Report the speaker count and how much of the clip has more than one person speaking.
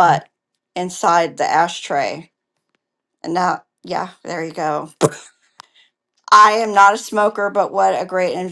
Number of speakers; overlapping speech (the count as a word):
one, no overlap